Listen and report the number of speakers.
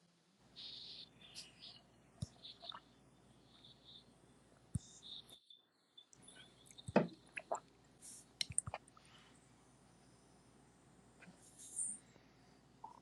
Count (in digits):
0